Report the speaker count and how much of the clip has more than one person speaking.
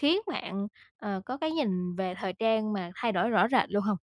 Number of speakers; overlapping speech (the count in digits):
1, no overlap